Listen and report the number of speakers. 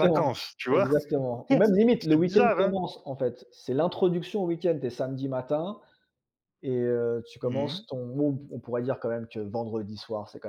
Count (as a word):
two